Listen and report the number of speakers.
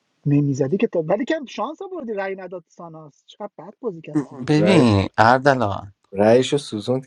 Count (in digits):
3